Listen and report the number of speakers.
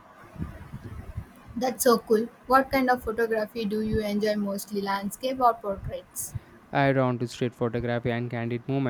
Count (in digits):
2